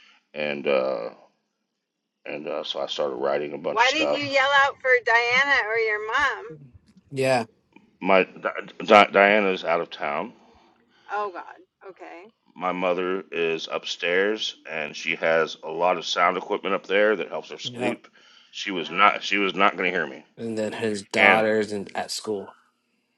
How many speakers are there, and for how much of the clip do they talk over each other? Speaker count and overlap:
three, about 6%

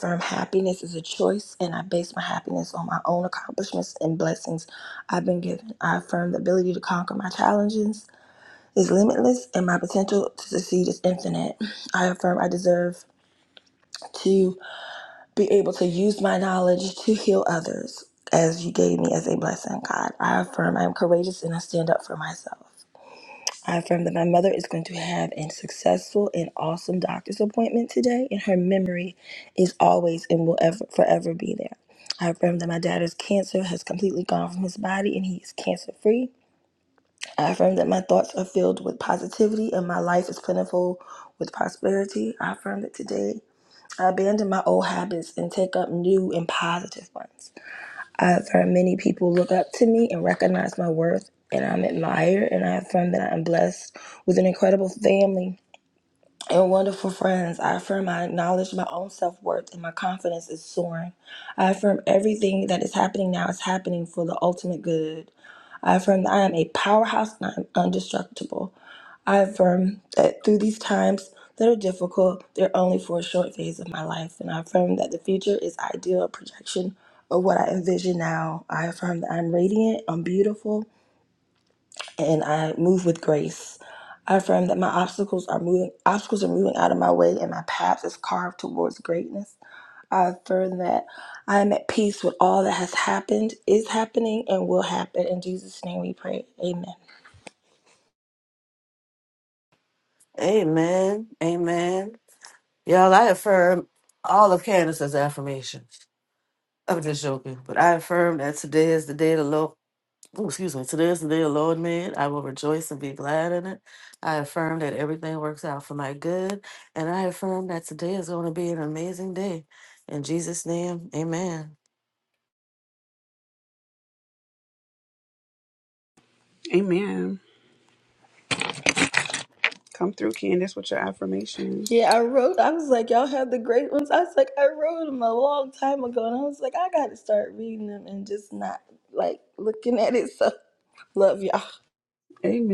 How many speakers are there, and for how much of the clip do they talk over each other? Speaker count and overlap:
three, no overlap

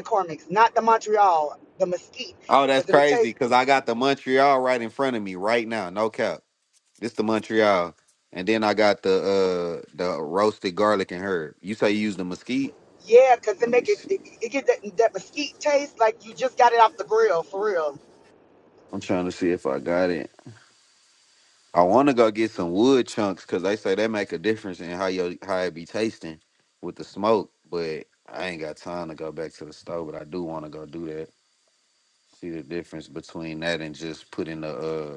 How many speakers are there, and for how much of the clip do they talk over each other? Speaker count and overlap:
two, about 3%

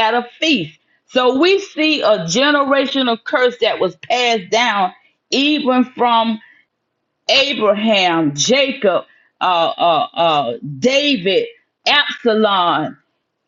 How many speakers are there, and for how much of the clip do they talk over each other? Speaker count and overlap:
one, no overlap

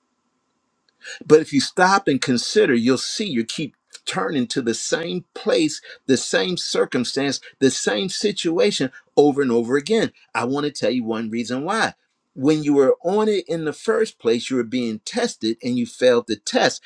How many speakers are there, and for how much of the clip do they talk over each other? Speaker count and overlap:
one, no overlap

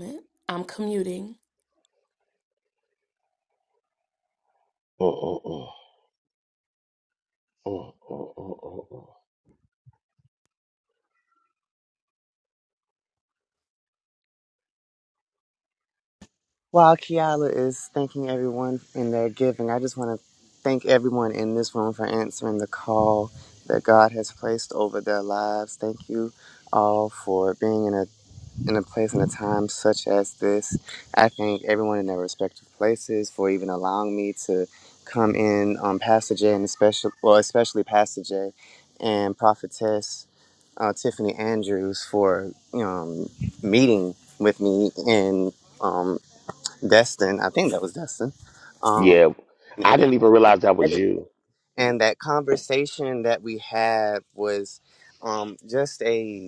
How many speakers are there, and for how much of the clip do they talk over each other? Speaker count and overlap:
three, about 1%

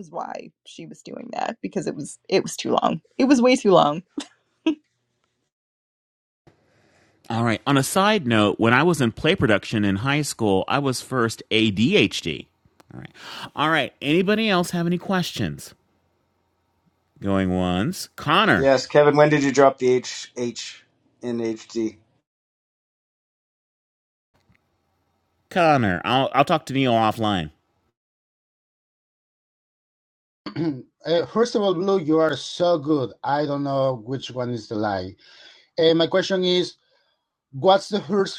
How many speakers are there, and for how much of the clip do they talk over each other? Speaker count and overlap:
four, under 1%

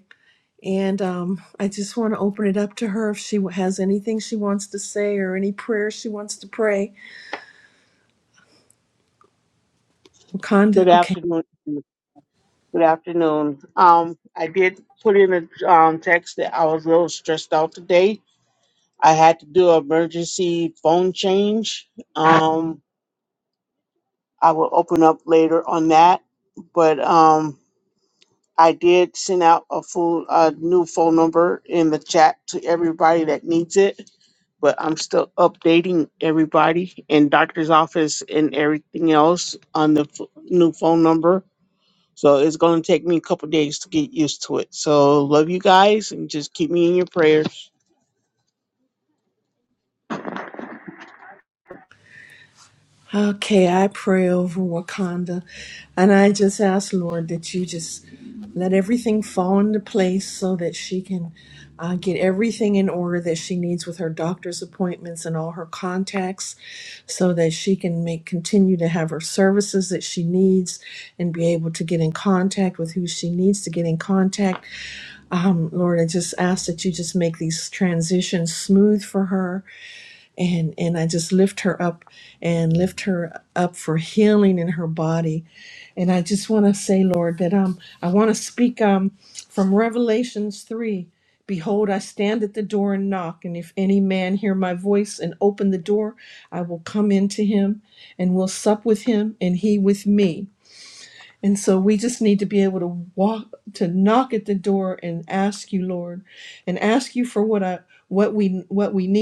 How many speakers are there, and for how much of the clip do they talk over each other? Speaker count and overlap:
two, under 1%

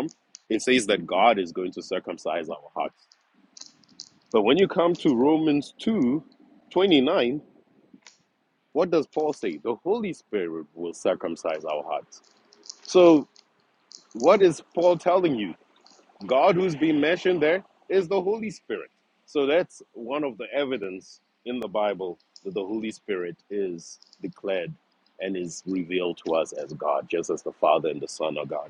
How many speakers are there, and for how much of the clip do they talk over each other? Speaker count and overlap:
one, no overlap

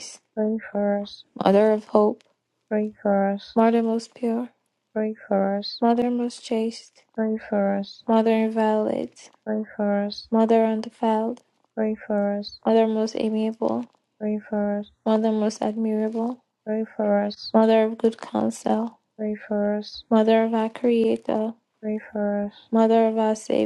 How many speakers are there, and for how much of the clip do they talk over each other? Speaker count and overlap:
two, no overlap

